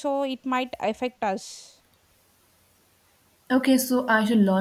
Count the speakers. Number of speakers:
two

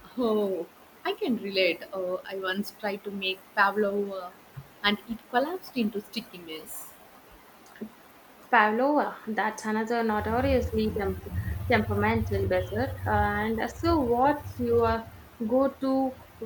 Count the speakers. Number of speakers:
two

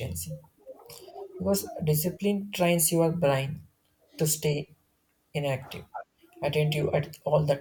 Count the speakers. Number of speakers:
one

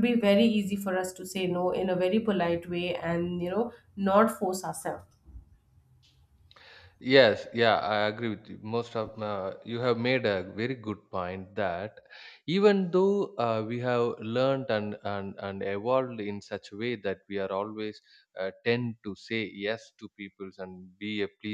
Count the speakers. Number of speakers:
two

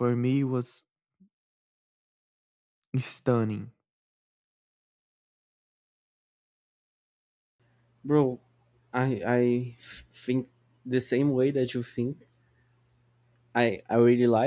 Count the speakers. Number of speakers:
two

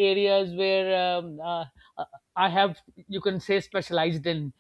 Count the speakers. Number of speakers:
one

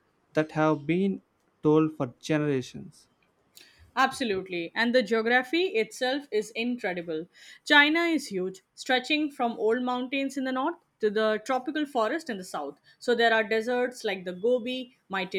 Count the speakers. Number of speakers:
two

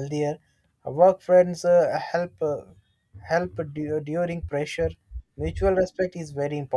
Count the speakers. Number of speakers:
one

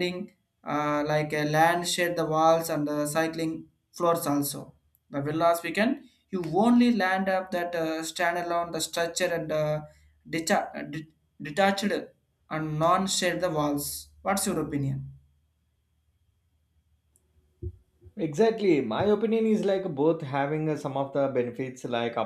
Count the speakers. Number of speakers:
two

